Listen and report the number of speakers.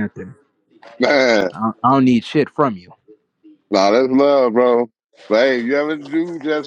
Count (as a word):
two